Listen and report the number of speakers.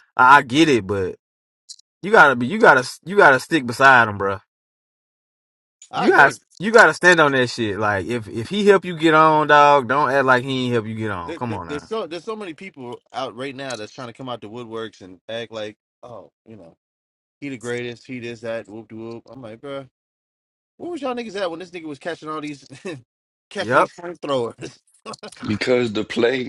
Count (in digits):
3